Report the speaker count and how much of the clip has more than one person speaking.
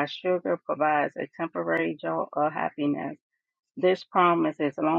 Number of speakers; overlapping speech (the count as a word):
one, no overlap